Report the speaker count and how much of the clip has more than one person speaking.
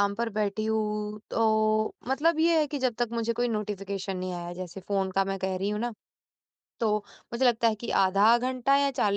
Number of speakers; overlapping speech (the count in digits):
1, no overlap